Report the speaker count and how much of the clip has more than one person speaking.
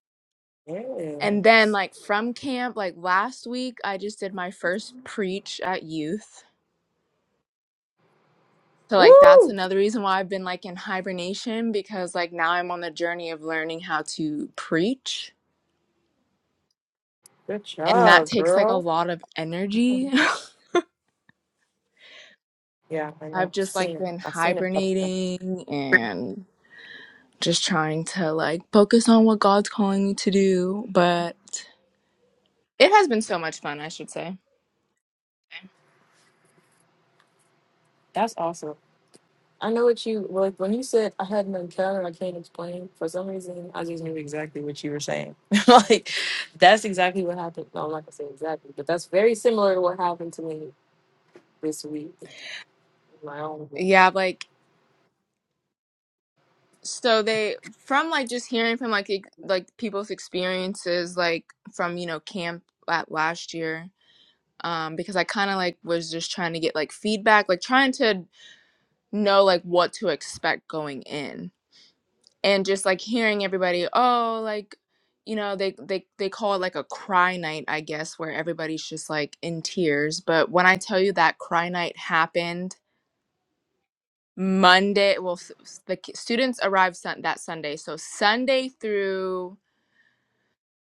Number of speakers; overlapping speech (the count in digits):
2, about 3%